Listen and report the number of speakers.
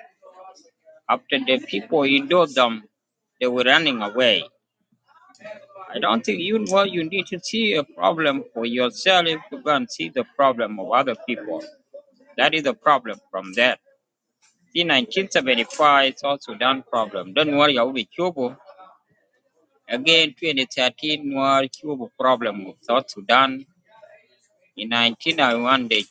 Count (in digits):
1